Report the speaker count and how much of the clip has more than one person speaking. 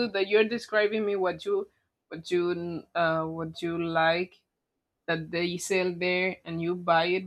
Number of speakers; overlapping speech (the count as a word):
one, no overlap